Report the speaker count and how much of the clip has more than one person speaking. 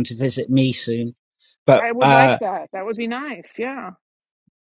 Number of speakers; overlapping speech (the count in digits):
2, about 13%